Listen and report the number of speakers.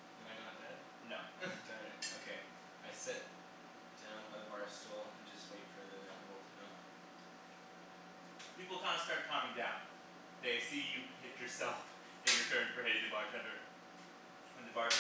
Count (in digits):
2